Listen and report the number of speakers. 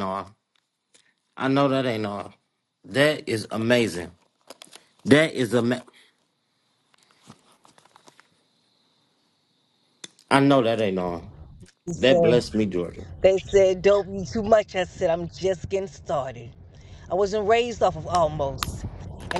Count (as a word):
two